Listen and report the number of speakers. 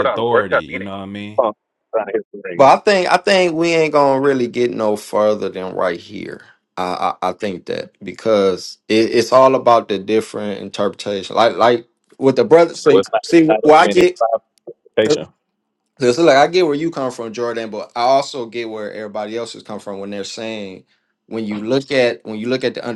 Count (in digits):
3